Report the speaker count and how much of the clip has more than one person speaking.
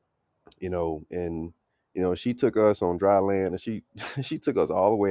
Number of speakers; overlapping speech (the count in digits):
1, no overlap